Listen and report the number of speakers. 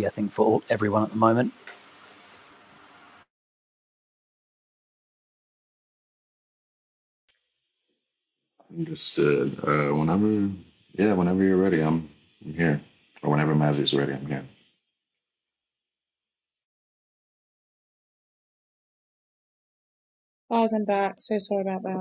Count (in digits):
3